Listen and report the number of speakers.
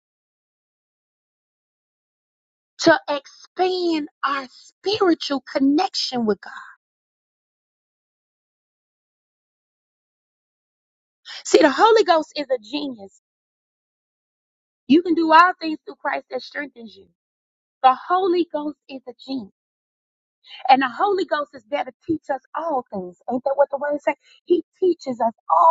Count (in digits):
1